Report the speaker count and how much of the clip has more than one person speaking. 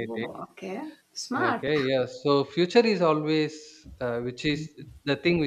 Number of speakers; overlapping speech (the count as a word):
two, about 10%